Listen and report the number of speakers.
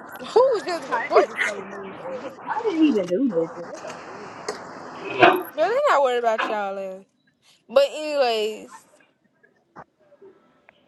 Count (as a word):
three